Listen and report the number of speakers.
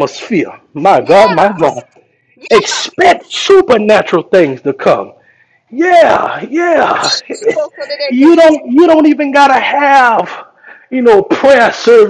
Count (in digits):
2